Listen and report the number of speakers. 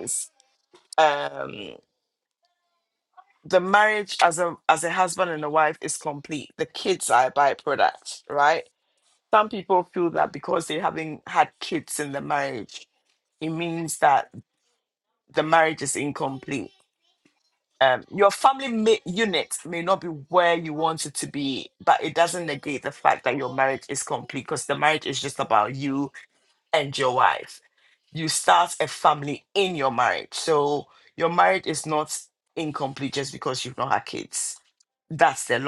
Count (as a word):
one